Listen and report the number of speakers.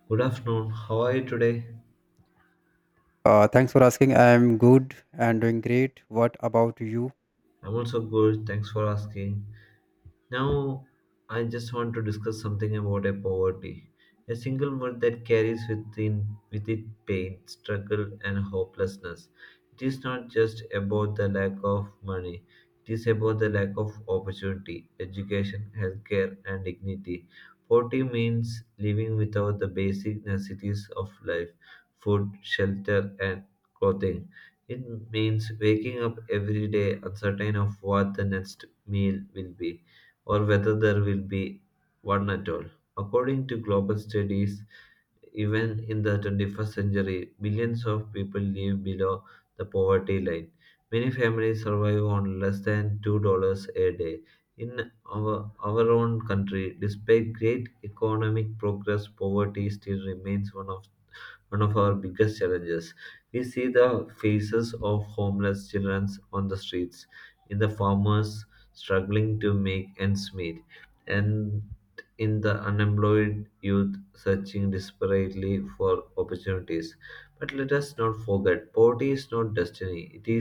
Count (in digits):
2